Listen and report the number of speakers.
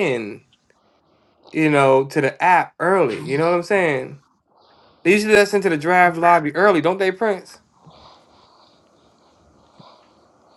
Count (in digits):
1